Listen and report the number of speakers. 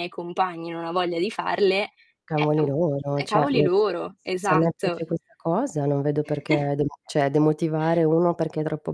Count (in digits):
2